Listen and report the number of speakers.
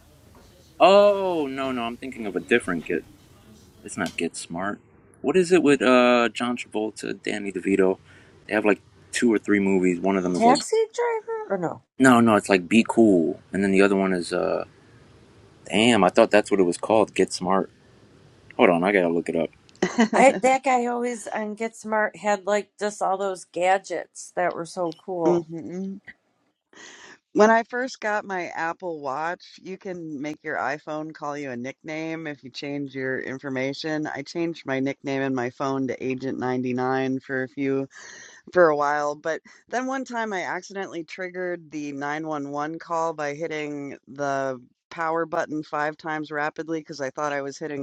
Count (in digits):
3